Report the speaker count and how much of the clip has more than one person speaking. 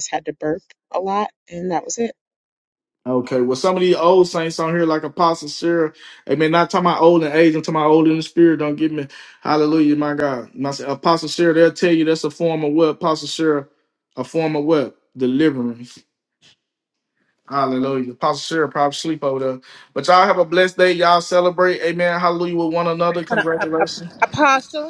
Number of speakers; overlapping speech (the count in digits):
3, about 3%